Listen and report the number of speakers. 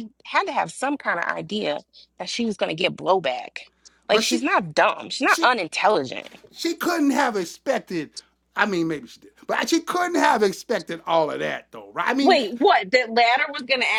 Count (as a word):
three